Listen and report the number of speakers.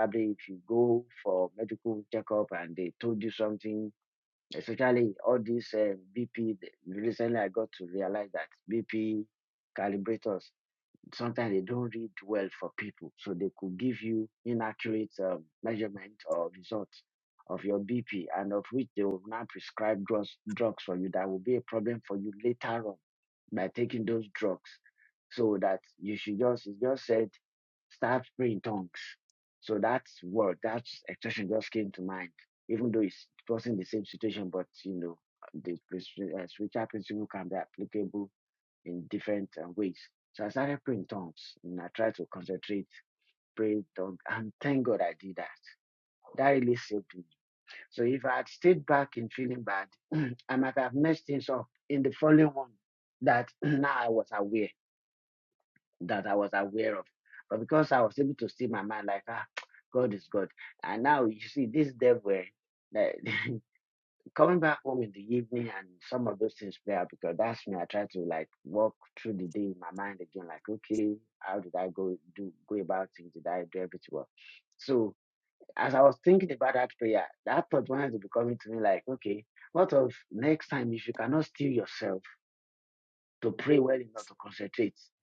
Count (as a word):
one